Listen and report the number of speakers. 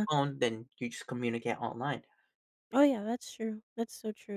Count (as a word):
two